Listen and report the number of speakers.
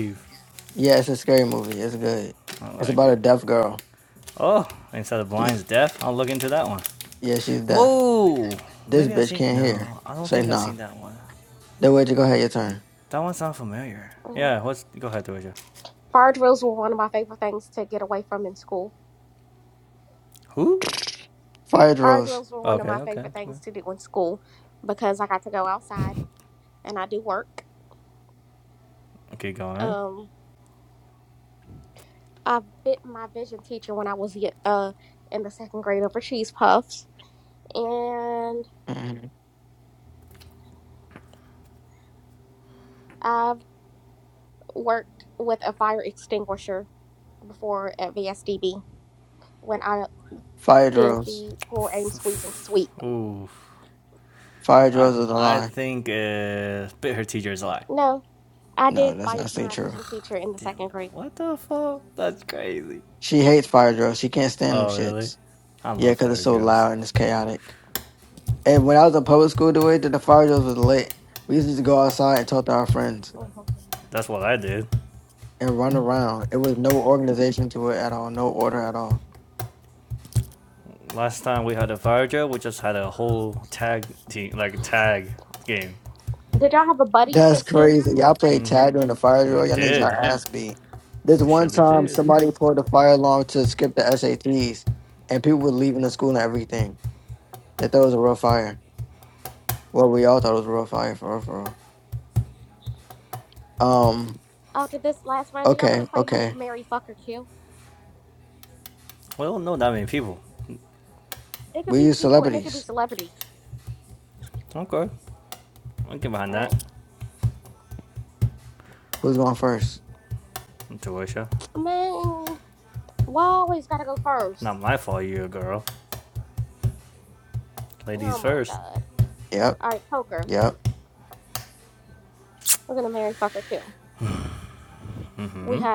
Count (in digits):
3